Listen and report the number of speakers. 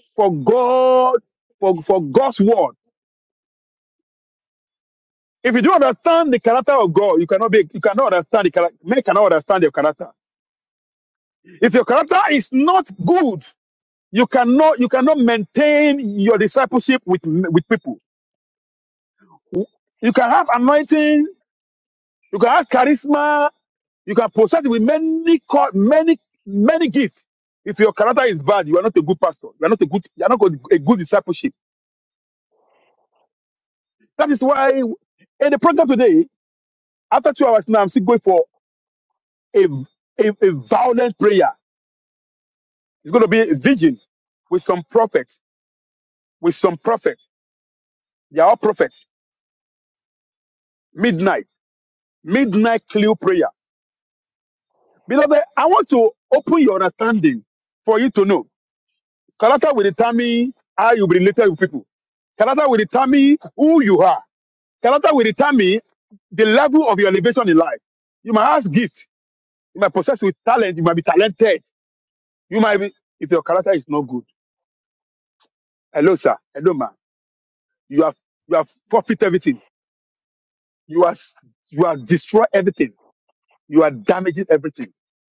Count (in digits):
1